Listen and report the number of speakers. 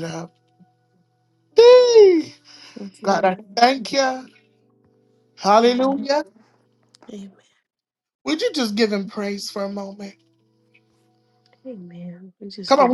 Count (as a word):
two